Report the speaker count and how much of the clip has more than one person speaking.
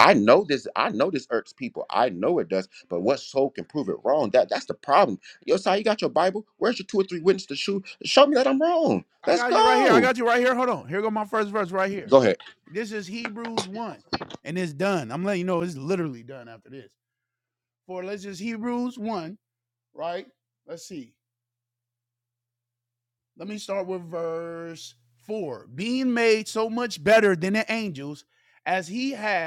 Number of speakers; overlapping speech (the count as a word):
two, about 3%